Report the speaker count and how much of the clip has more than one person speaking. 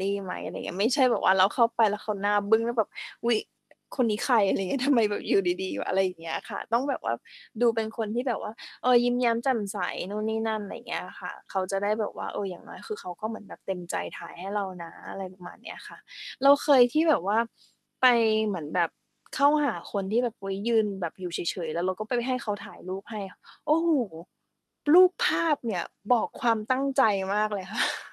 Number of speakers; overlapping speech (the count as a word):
one, no overlap